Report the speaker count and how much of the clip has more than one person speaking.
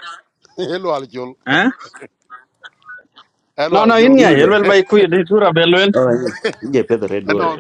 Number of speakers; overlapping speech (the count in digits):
3, about 13%